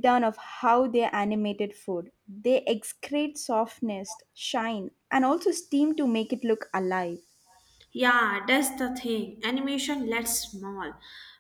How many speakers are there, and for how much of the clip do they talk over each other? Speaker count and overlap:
2, no overlap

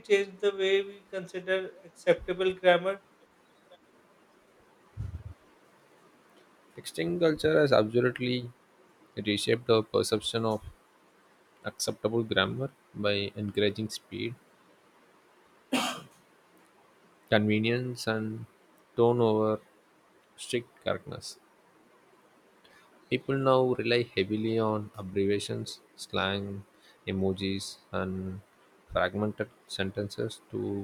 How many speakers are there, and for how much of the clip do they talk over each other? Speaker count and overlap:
2, no overlap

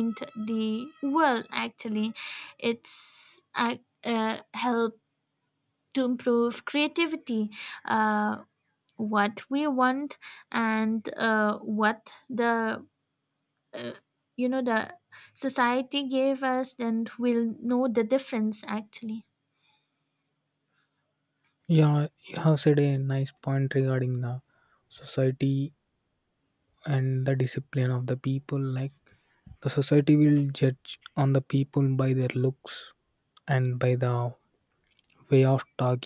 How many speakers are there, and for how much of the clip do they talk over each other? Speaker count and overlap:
2, no overlap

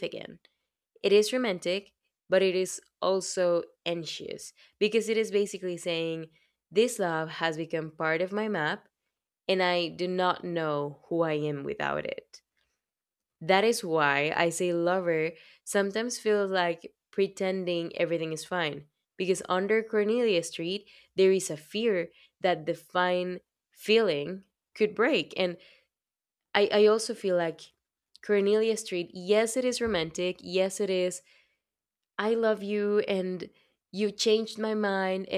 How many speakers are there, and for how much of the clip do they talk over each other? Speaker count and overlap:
1, no overlap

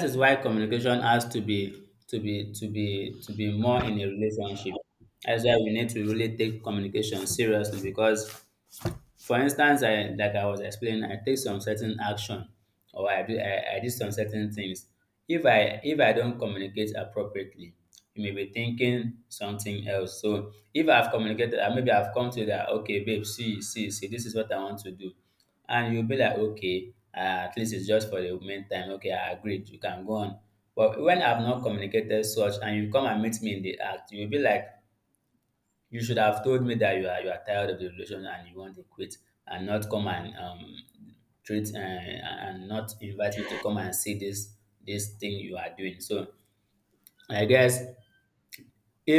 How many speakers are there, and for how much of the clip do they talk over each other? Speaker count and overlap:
1, no overlap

